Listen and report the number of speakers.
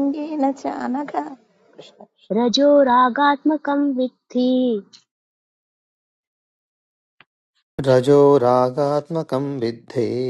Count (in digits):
3